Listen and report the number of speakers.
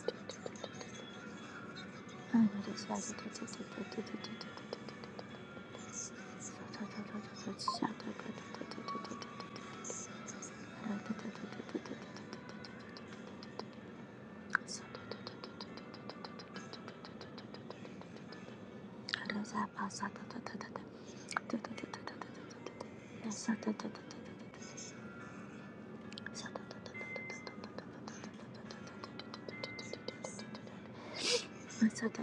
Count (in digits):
0